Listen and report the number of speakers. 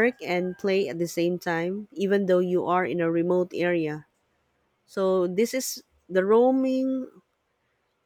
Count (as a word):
one